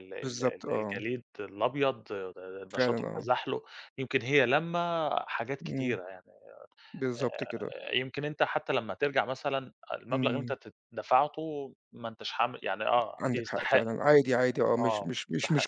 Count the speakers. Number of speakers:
two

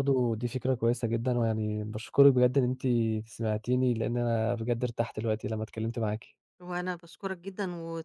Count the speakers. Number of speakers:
two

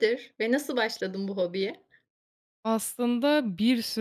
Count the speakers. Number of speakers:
two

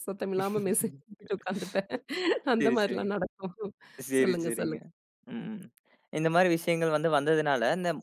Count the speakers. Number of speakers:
two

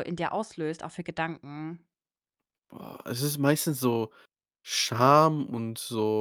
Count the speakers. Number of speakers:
two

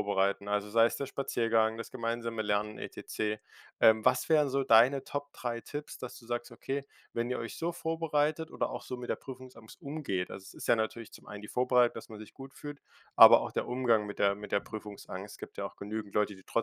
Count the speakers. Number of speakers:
one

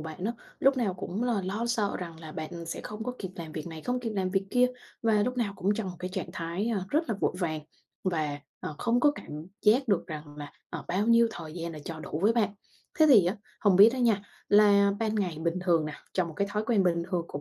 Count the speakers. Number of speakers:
one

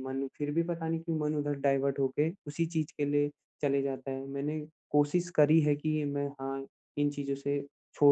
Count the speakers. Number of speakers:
one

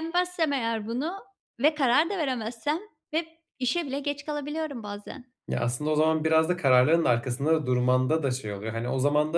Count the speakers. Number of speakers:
two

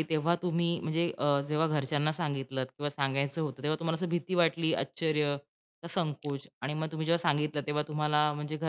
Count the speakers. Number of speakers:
one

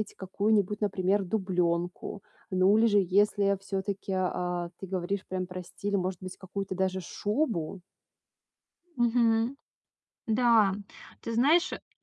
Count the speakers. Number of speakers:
two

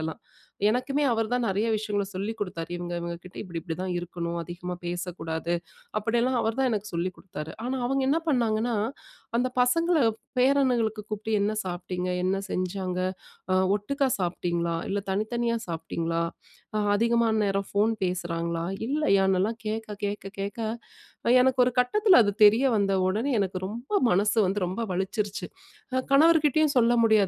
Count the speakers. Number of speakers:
one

